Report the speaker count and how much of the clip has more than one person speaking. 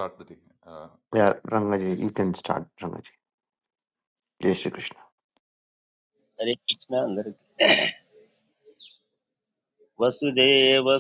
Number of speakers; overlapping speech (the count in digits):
3, about 11%